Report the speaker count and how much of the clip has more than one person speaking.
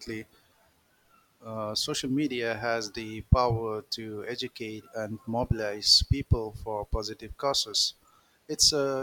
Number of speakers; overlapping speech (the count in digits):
1, no overlap